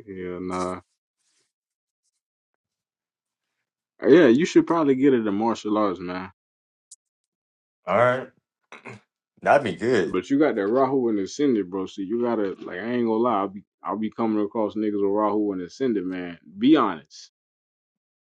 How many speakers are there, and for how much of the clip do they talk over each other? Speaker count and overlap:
two, under 1%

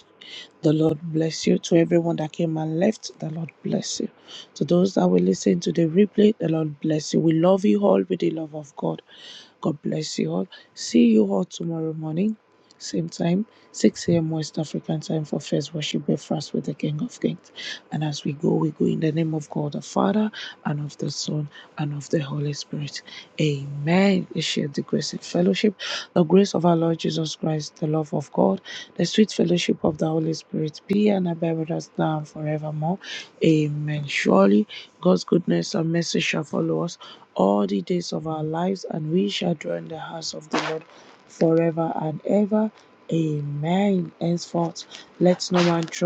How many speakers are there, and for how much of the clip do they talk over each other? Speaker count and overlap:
one, no overlap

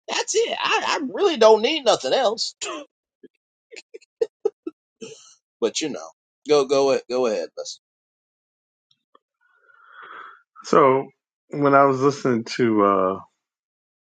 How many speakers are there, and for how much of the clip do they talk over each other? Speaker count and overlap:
two, no overlap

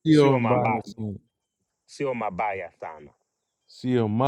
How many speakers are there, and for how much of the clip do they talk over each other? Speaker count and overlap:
two, about 18%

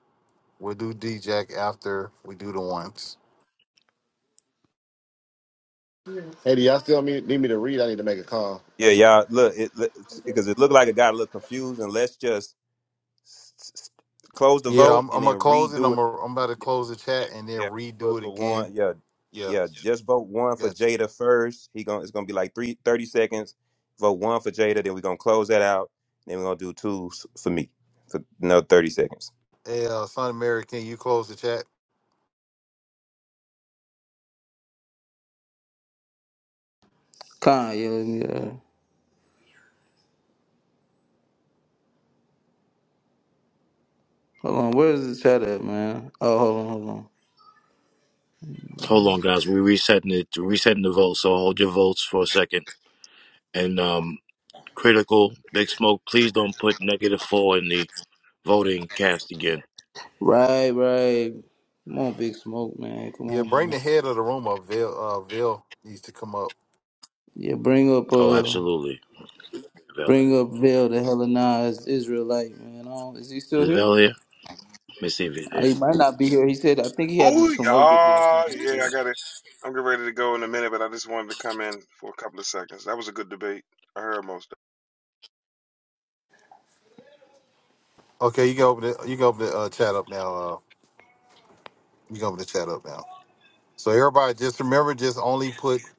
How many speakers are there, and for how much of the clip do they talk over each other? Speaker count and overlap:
six, about 6%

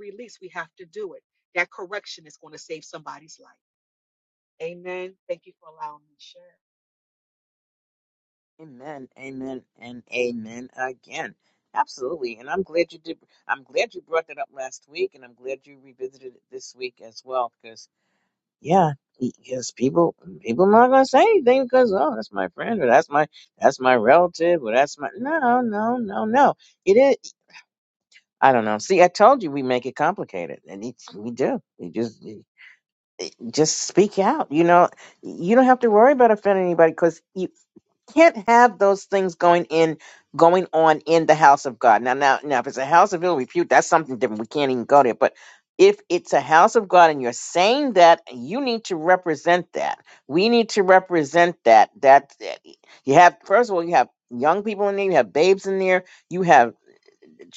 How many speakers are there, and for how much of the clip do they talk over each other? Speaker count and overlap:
two, no overlap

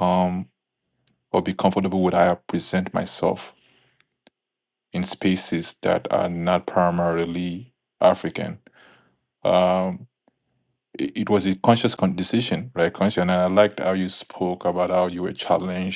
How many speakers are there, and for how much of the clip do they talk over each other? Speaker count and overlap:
one, no overlap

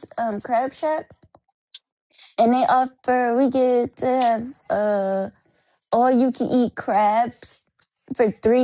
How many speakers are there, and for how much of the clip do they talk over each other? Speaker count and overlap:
one, no overlap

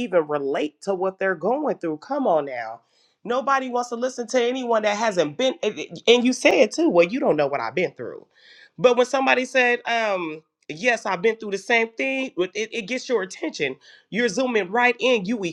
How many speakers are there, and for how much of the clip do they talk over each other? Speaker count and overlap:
one, no overlap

